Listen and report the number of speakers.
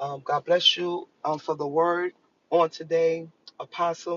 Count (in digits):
1